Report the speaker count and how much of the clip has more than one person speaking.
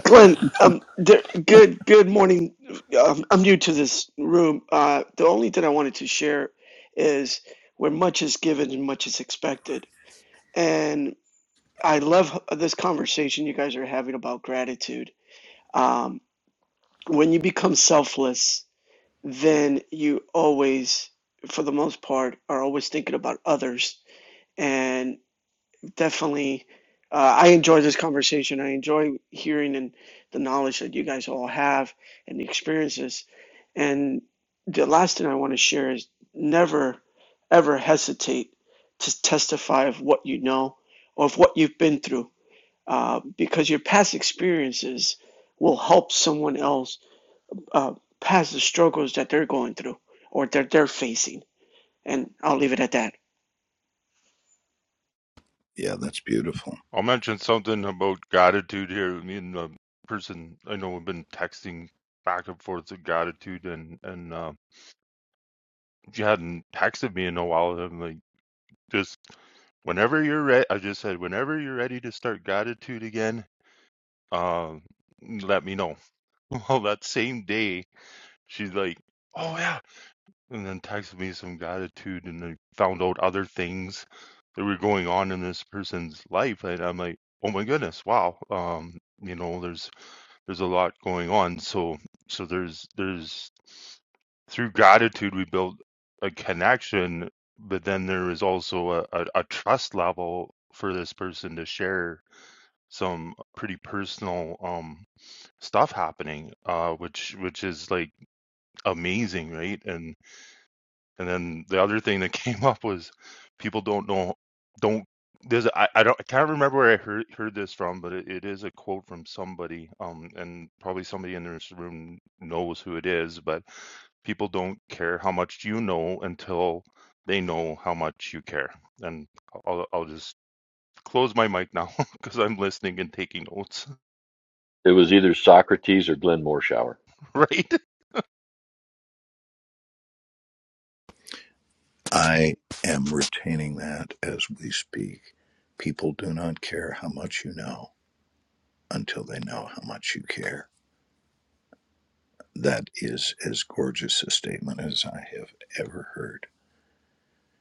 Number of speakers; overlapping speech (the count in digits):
4, no overlap